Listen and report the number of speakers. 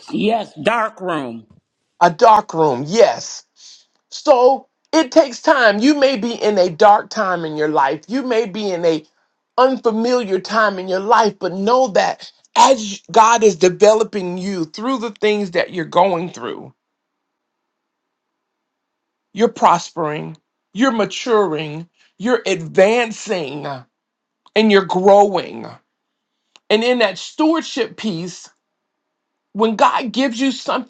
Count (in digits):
2